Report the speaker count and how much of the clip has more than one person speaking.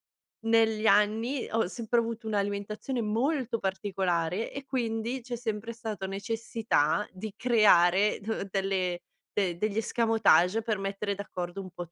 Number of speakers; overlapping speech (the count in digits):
1, no overlap